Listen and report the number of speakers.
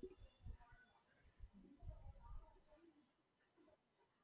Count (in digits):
0